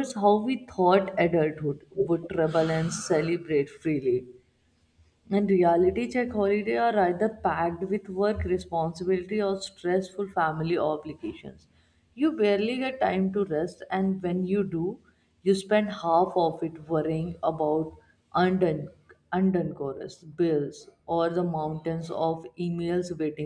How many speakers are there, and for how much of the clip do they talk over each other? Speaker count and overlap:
1, no overlap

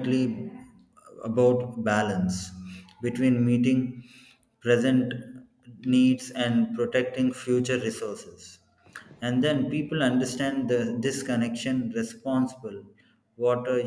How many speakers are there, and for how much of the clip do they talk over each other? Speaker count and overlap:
1, no overlap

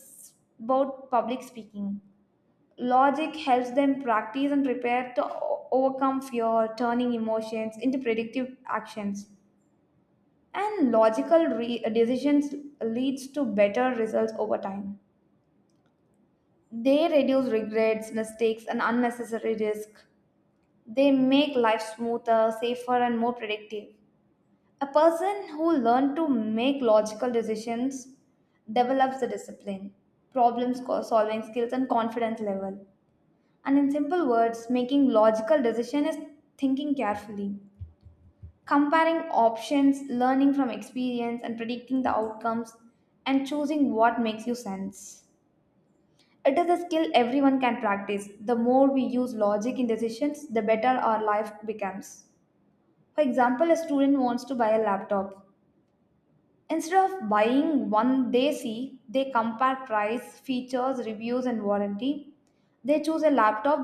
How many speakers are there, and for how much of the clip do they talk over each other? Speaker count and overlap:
1, no overlap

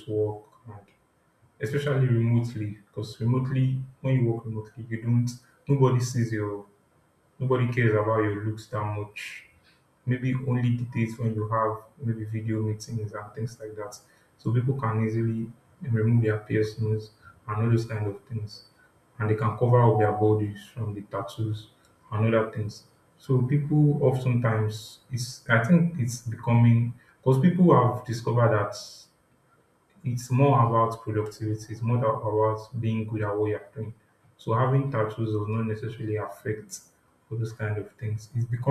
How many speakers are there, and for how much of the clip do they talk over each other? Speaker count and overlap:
1, no overlap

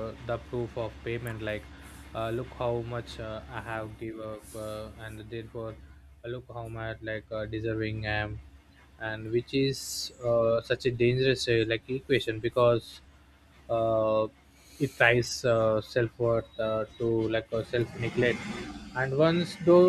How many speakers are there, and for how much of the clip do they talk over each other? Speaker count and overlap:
1, no overlap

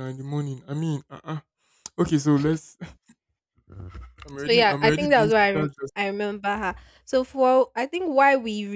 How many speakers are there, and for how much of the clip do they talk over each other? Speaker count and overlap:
2, about 17%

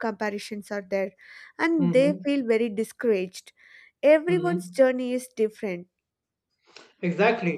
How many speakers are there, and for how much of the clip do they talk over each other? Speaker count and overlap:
2, about 9%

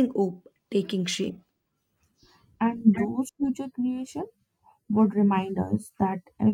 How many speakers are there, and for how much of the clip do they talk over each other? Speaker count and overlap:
2, no overlap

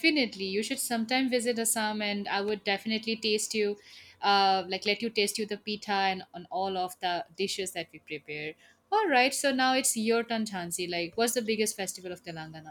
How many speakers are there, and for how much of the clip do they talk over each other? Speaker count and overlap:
1, no overlap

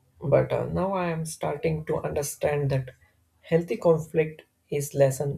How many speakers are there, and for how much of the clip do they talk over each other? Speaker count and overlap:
1, no overlap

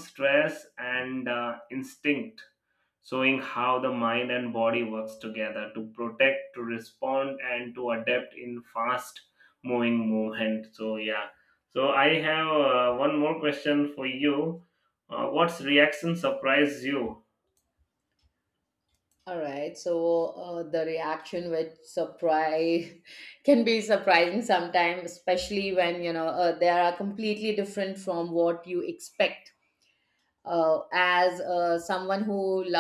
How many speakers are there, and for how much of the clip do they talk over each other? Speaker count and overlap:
2, no overlap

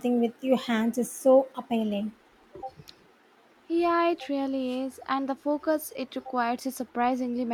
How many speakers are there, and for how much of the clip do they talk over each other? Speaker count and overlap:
2, no overlap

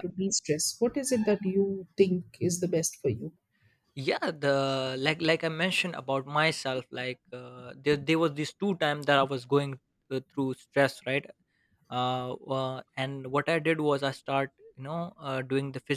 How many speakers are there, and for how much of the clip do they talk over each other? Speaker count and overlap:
2, under 1%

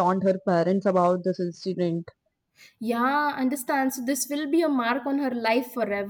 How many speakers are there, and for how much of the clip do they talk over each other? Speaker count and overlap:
2, no overlap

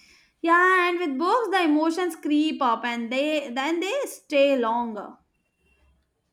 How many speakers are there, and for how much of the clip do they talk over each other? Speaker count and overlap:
1, no overlap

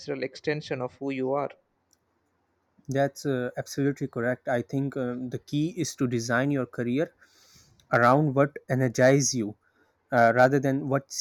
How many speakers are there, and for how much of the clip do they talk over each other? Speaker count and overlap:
2, no overlap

